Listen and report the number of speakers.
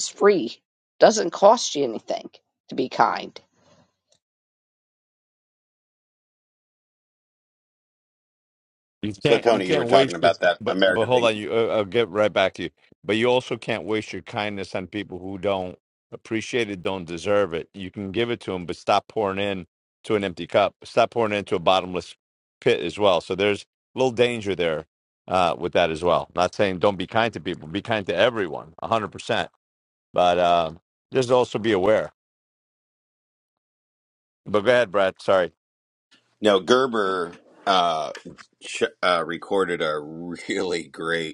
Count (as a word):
three